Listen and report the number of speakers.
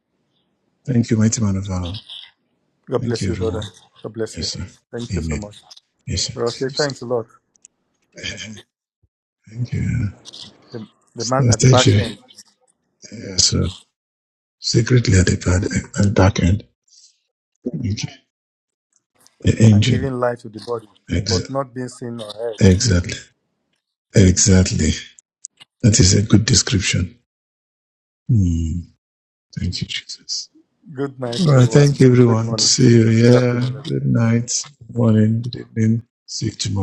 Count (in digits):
2